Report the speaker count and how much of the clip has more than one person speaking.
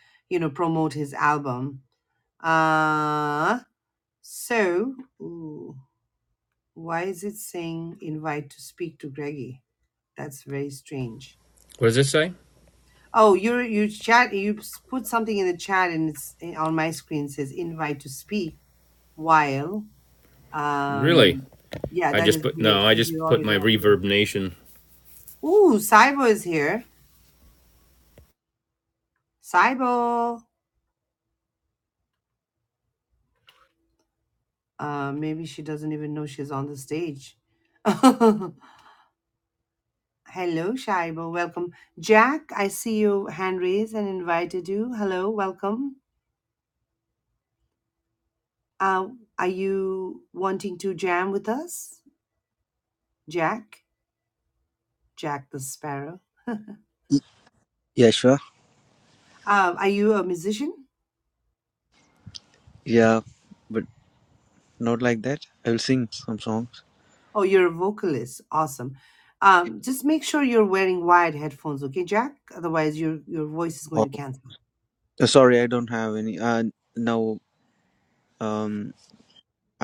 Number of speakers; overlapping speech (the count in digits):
3, about 3%